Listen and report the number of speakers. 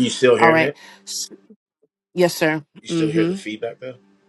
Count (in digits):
2